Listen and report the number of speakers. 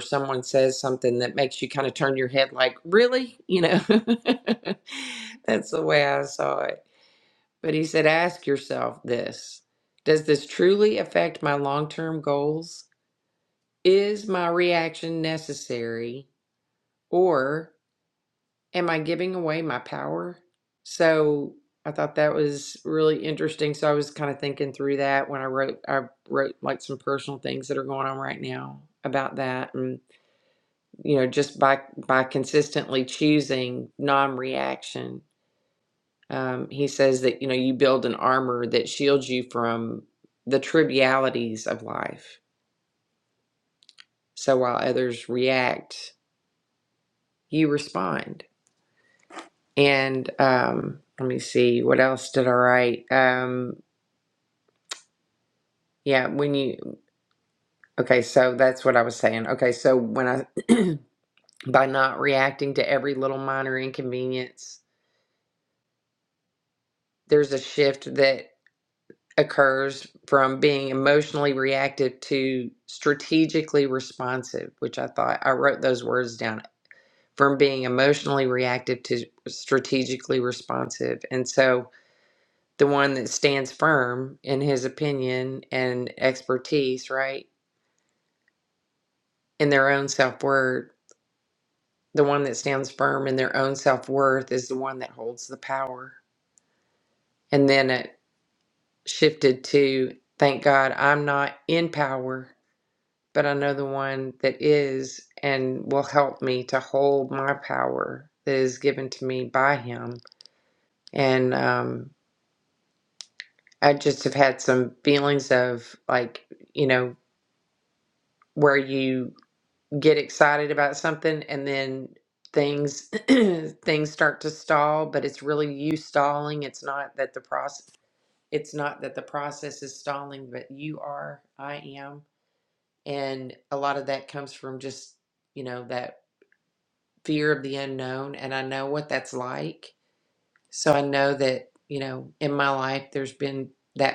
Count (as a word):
one